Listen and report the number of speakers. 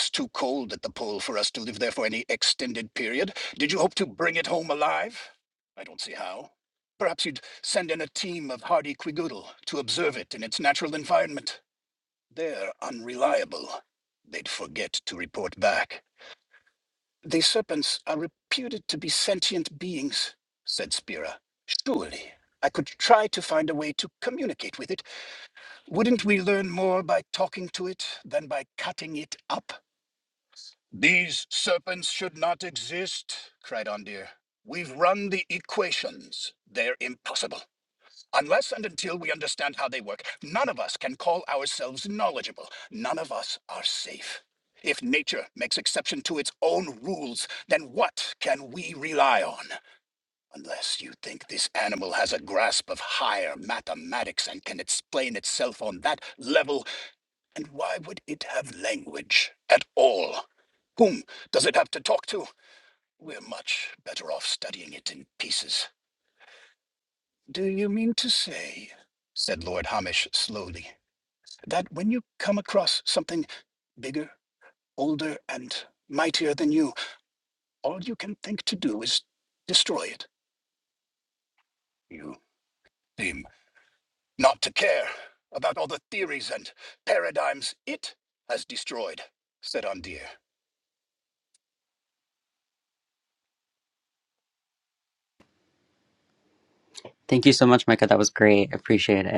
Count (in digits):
2